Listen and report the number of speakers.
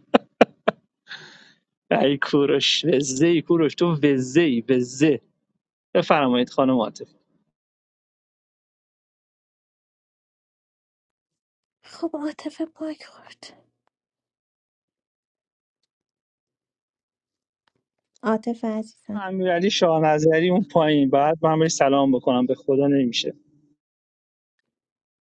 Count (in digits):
2